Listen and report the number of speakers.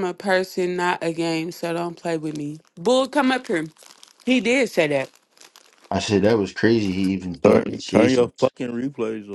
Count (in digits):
3